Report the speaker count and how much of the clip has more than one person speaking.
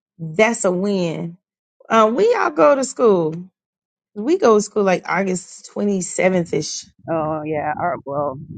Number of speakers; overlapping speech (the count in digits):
2, no overlap